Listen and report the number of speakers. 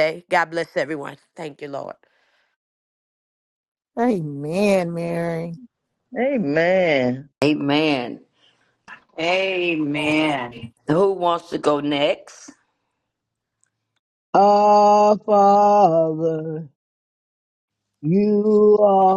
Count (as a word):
six